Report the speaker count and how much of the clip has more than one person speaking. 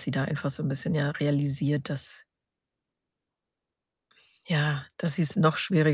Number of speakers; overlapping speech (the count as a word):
one, no overlap